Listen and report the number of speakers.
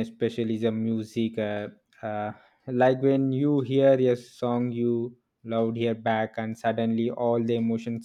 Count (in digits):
1